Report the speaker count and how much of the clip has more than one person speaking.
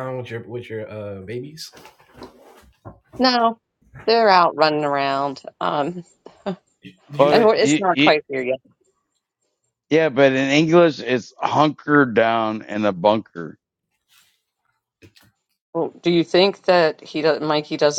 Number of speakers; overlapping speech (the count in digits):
3, about 5%